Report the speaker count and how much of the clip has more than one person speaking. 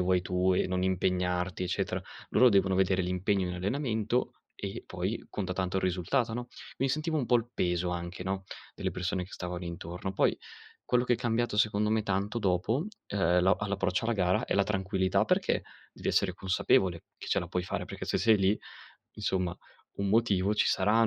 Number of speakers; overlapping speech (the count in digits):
1, no overlap